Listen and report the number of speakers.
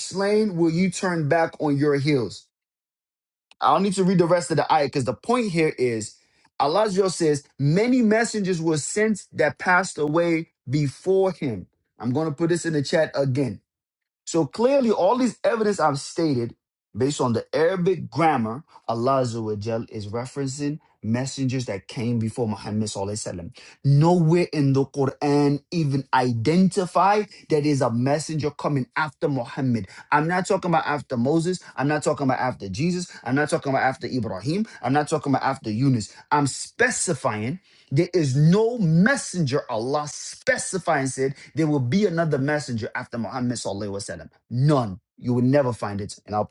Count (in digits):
1